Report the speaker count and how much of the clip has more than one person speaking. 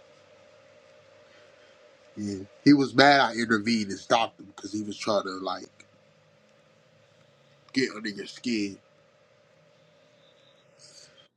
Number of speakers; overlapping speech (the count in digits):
1, no overlap